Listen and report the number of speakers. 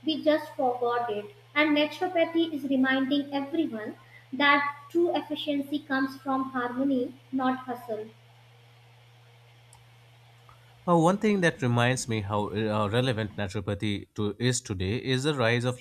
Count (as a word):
two